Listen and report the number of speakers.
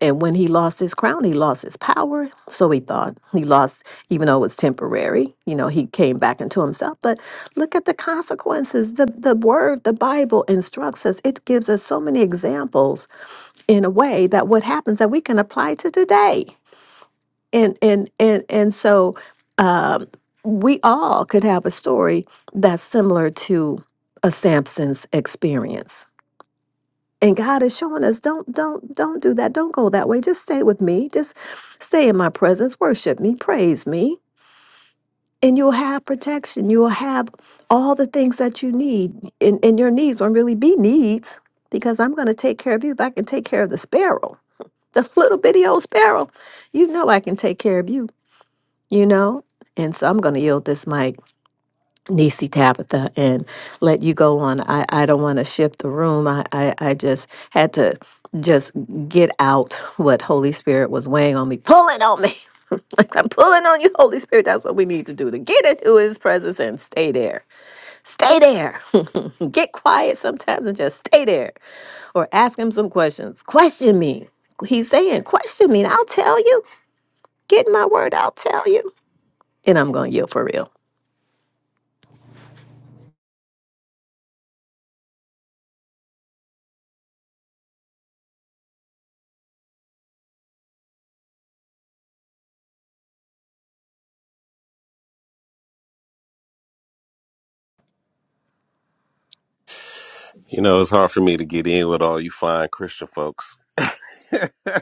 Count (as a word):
two